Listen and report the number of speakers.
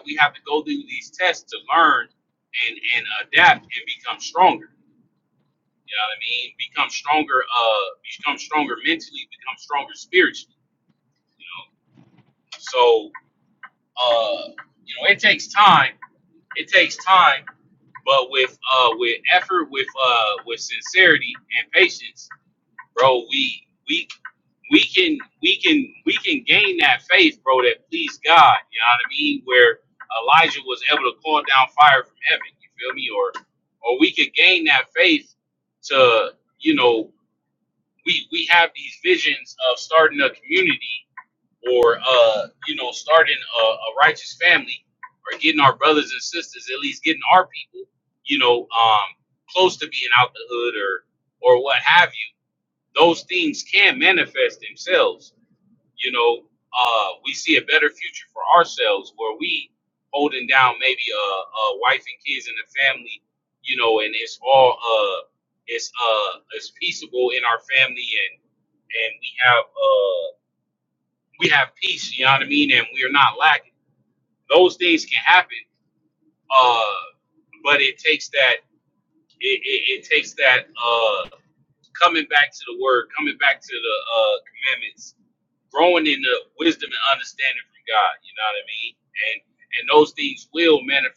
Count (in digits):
1